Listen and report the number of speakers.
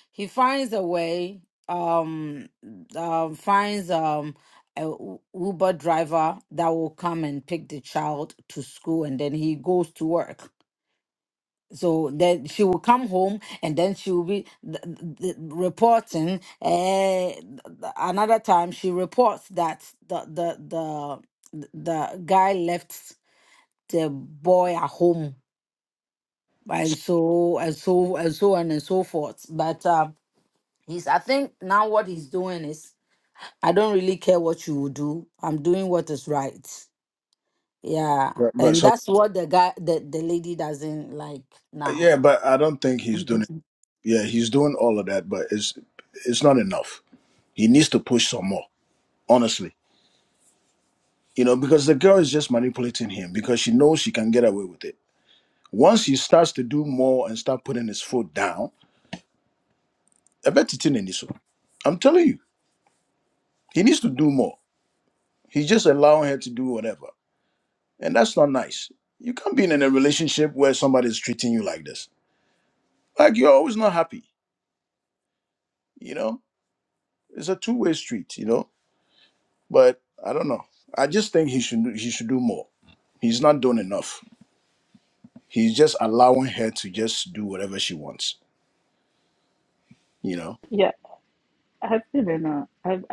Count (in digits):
3